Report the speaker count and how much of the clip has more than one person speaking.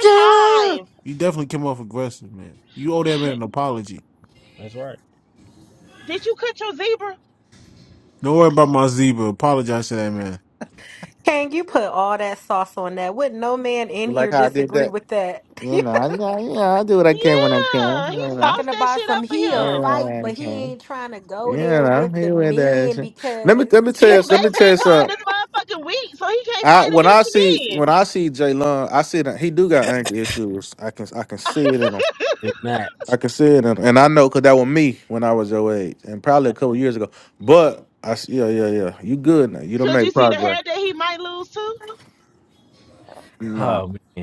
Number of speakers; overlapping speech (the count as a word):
five, about 23%